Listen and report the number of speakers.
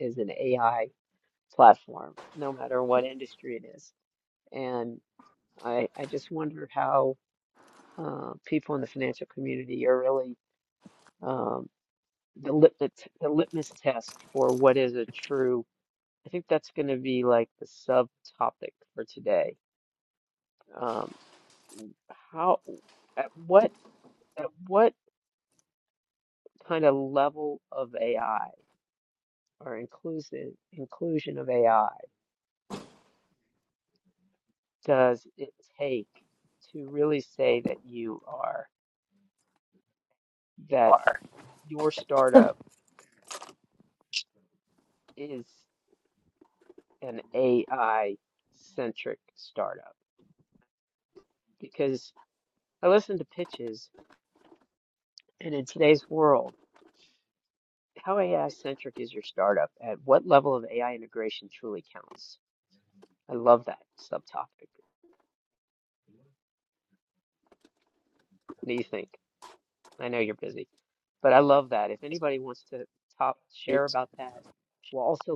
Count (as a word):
one